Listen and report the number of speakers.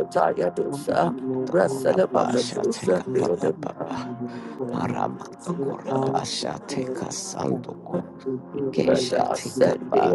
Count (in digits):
3